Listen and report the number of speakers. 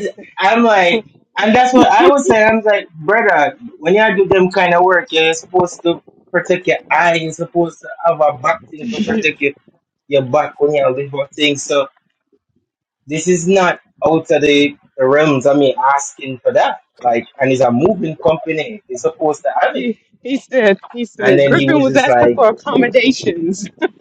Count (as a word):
two